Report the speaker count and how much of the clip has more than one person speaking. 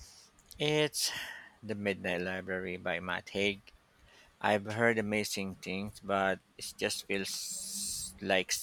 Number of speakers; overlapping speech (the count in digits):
1, no overlap